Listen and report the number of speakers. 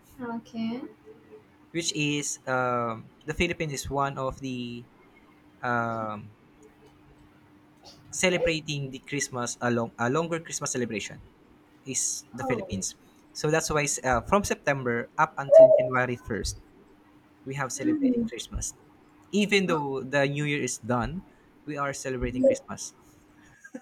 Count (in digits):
2